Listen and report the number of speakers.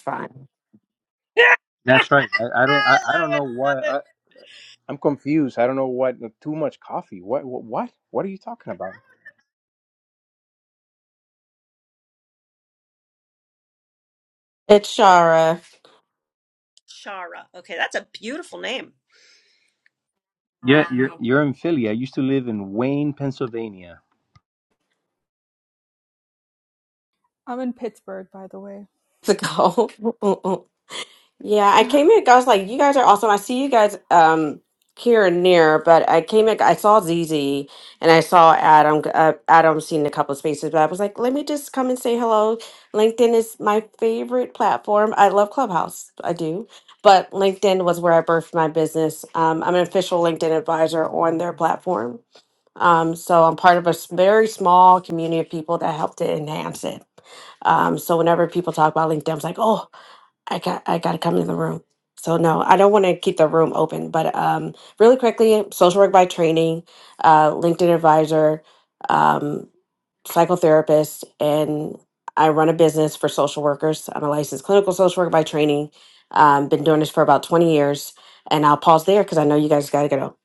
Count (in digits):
4